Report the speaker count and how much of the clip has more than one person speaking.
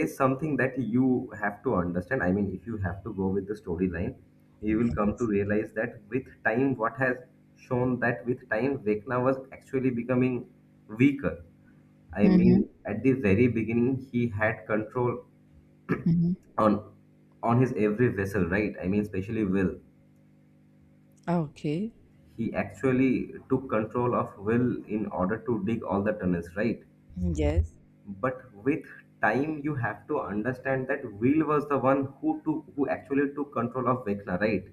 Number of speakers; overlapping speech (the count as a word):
two, about 2%